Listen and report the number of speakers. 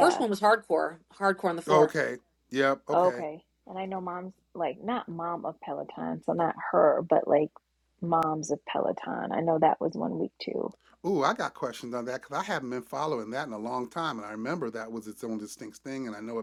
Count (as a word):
three